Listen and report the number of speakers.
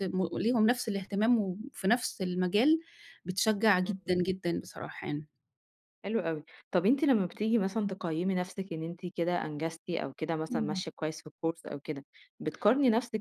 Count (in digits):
2